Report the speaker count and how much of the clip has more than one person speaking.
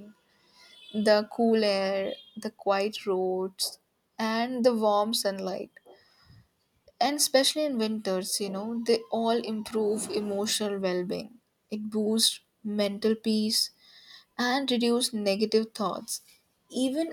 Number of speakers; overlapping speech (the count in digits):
1, no overlap